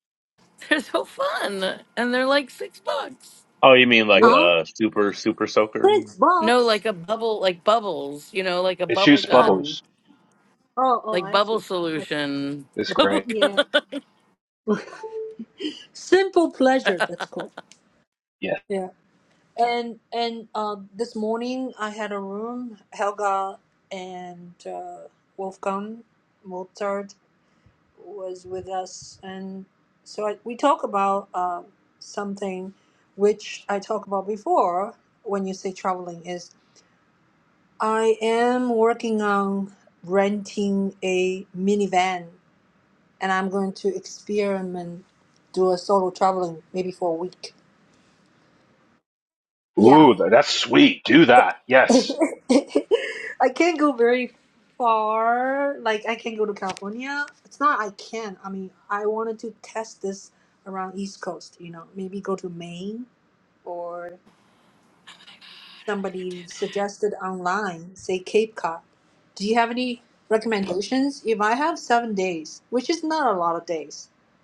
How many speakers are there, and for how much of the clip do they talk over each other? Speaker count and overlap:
4, about 4%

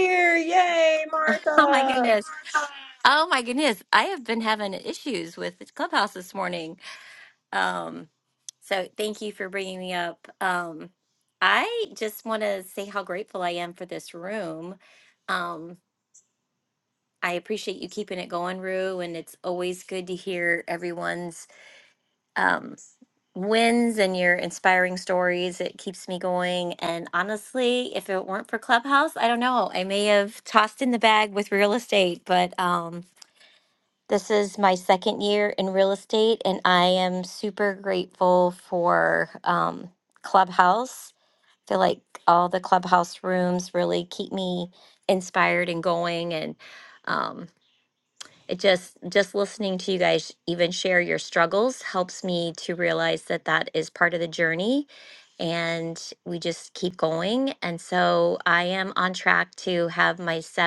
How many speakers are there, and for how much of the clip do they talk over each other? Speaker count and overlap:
2, about 1%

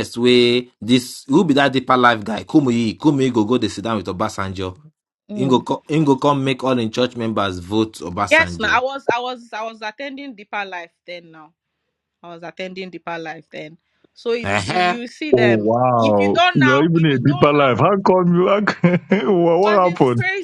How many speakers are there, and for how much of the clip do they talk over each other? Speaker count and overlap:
3, about 19%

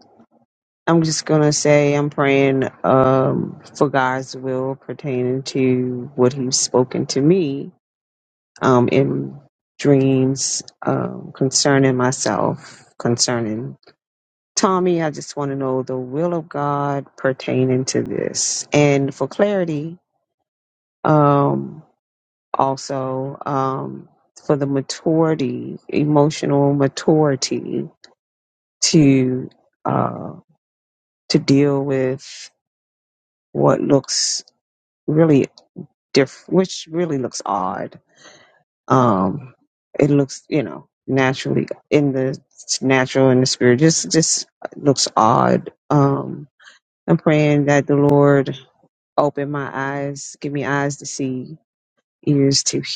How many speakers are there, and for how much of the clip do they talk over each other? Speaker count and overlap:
1, no overlap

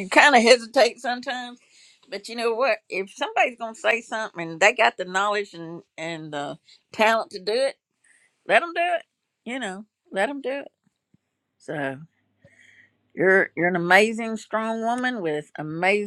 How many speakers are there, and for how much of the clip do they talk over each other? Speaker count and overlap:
1, no overlap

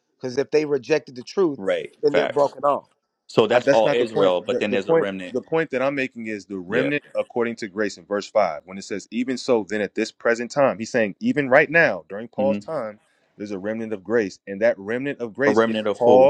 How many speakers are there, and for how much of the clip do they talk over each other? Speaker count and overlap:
3, about 22%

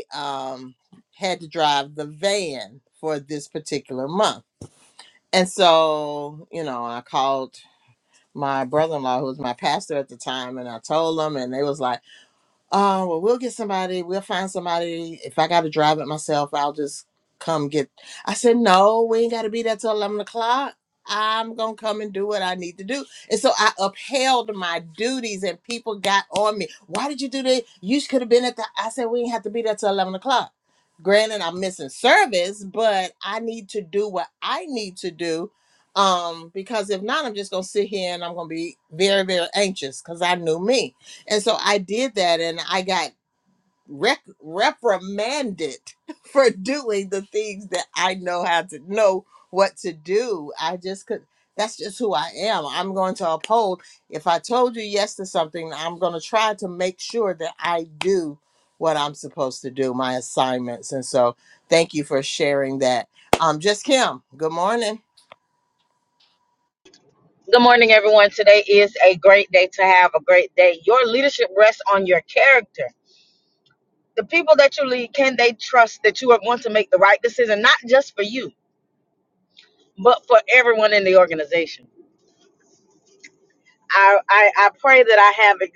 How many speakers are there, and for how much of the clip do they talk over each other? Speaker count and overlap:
2, no overlap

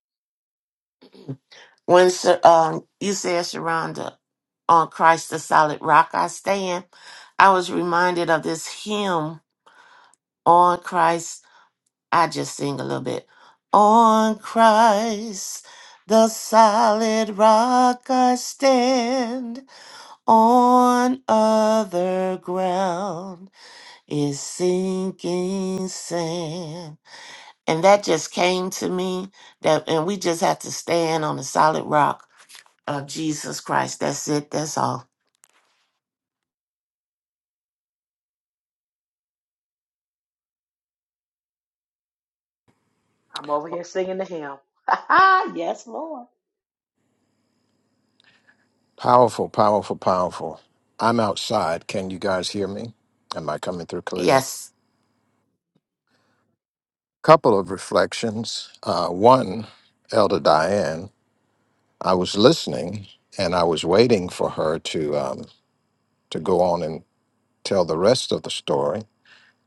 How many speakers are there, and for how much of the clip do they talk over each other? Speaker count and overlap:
3, under 1%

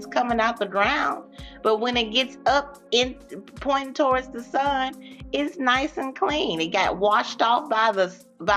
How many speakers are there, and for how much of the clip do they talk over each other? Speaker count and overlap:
1, no overlap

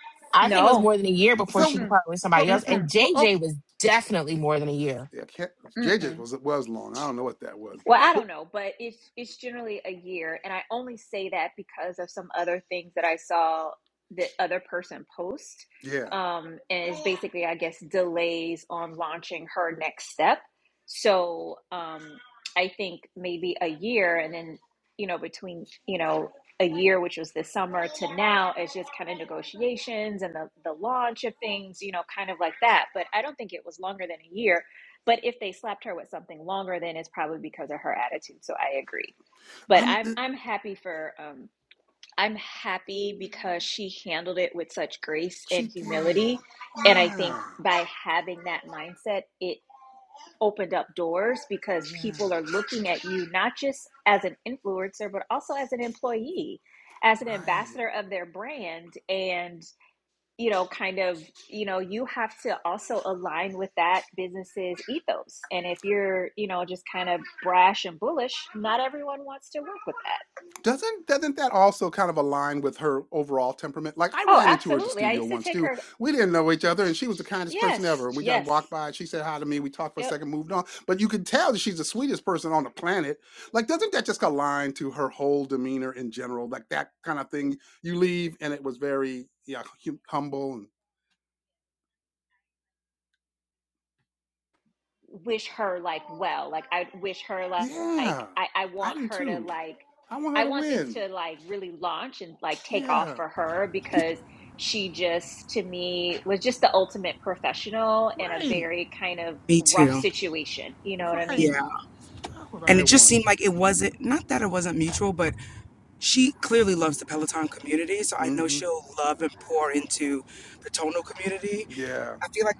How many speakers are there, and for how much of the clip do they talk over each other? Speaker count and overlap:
4, about 11%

